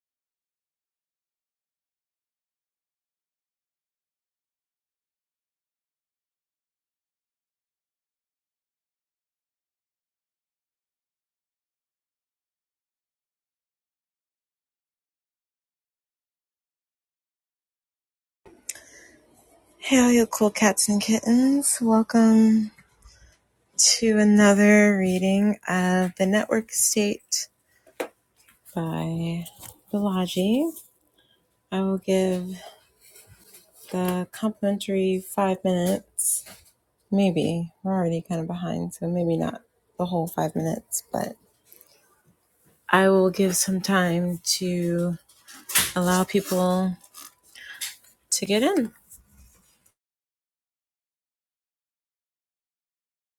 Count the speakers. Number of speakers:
one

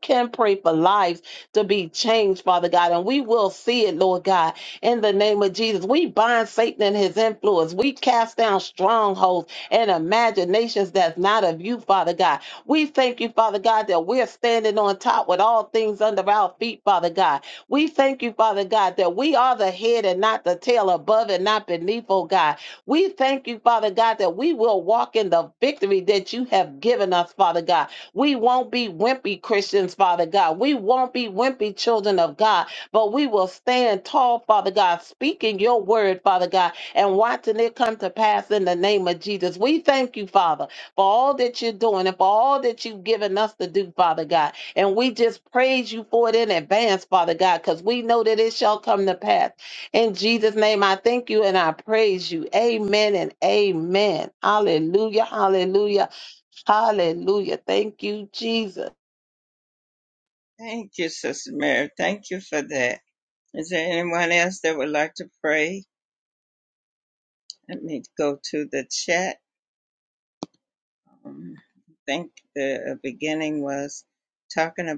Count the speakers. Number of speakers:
two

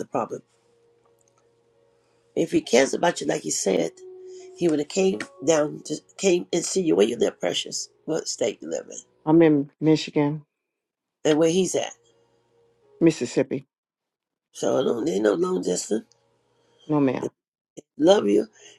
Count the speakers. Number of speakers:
two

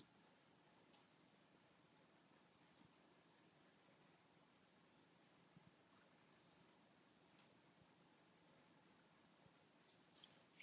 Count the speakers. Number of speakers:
zero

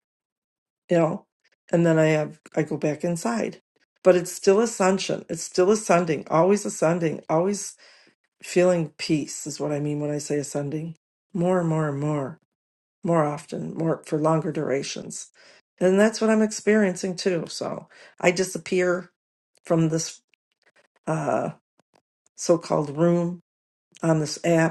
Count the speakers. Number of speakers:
one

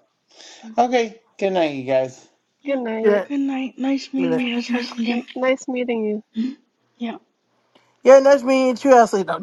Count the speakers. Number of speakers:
four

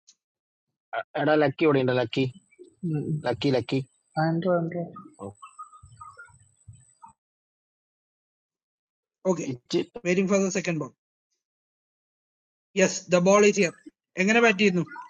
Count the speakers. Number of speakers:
three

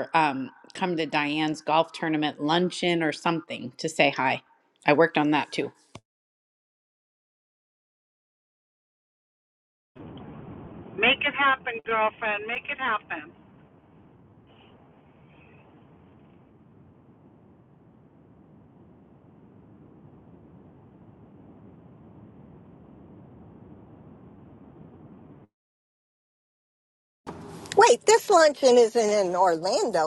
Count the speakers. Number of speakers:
three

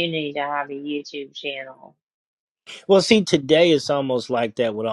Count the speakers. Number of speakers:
two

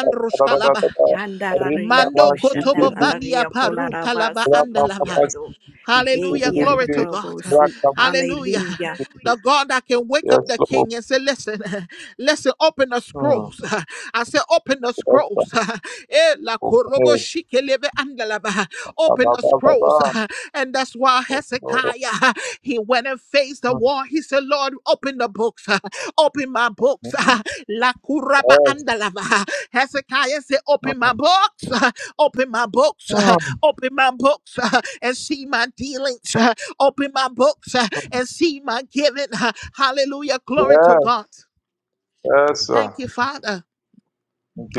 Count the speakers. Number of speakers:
three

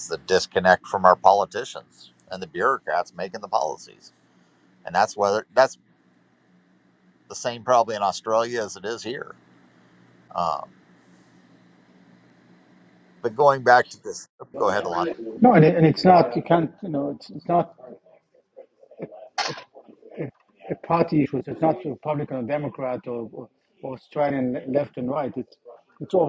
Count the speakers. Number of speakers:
two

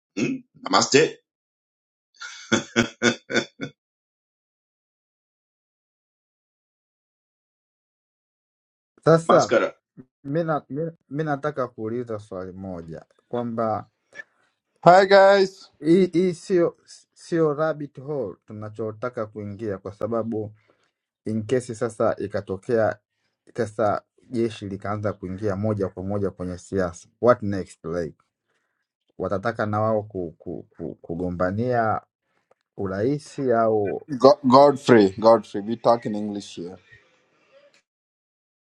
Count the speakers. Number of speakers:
three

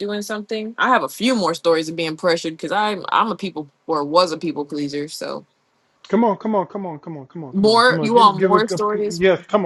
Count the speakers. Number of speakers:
two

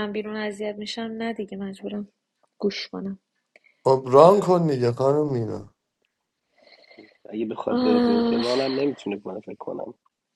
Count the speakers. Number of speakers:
three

